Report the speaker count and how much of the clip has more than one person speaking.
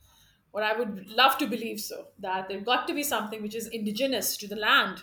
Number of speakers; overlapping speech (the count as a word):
one, no overlap